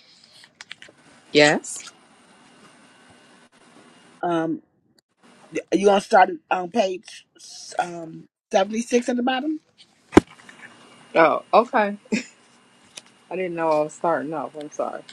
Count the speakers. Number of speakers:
2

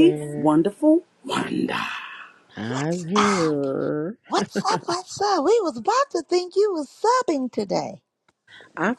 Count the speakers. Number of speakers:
3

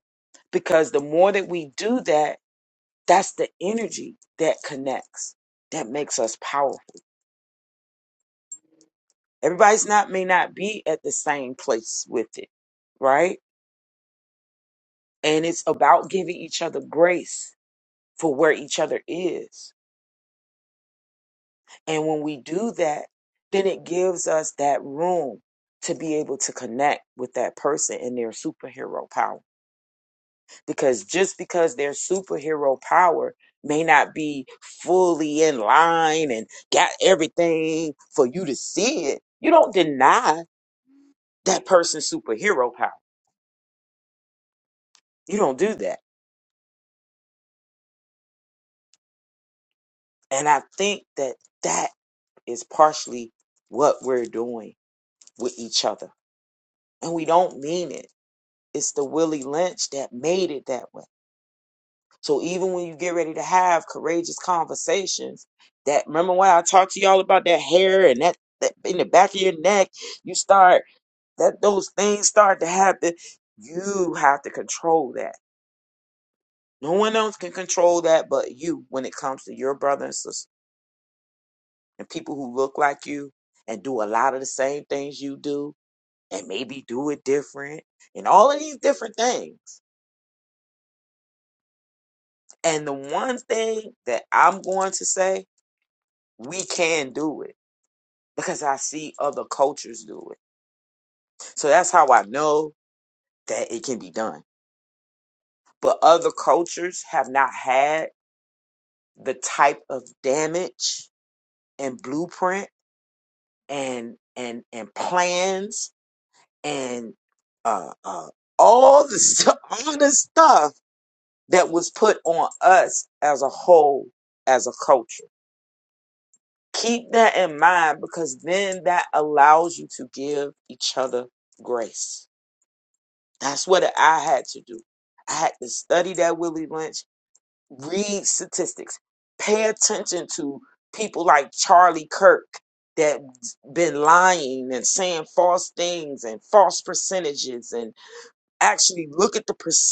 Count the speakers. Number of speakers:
1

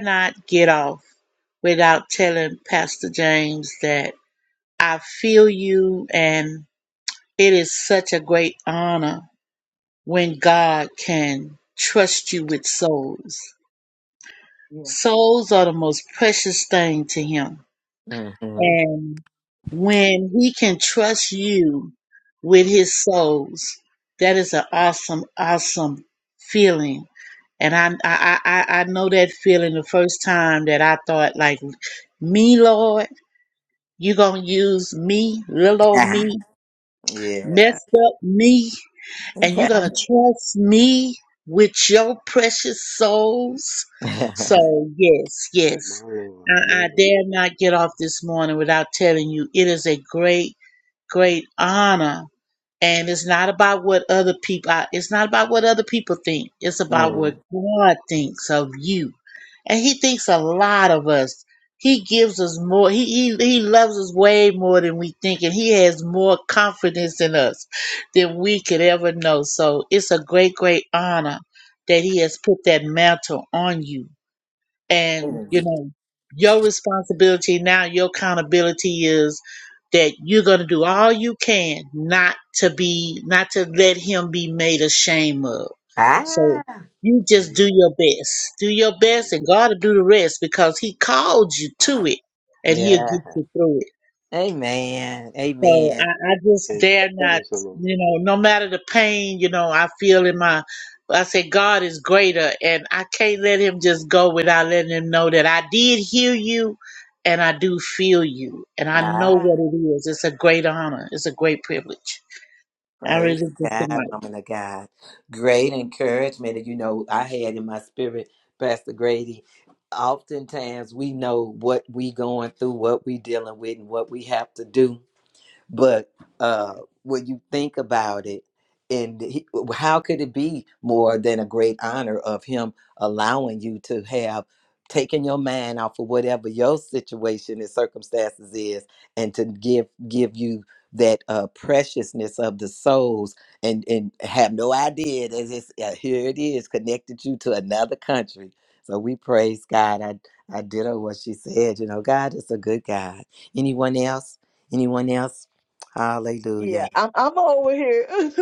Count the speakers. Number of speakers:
4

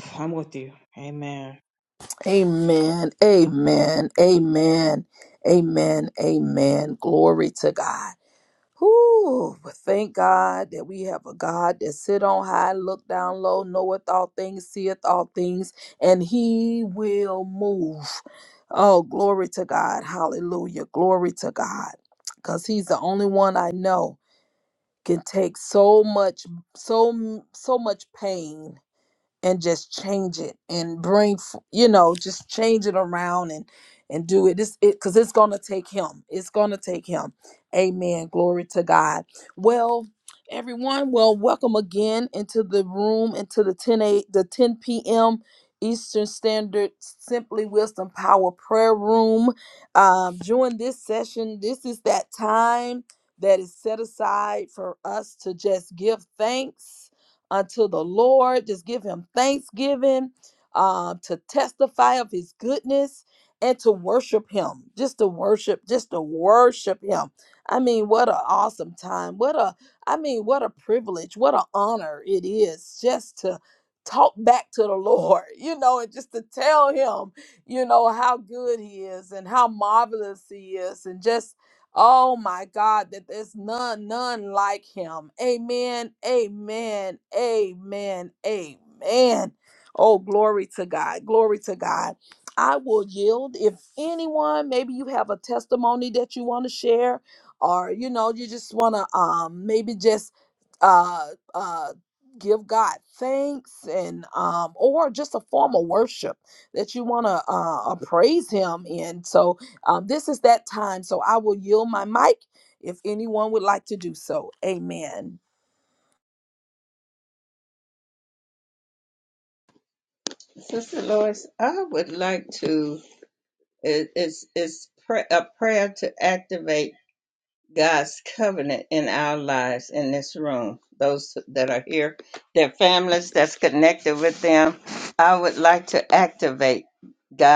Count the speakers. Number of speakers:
3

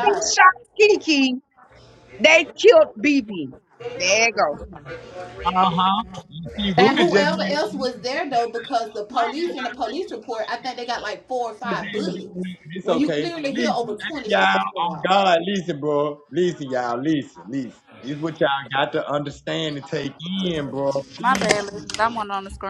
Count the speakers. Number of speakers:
4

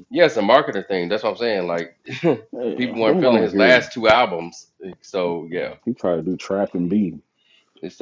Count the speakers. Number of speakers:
2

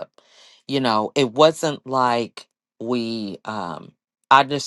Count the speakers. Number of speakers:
1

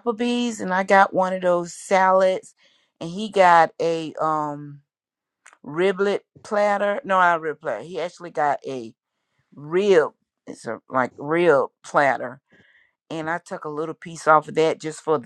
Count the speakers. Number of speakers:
1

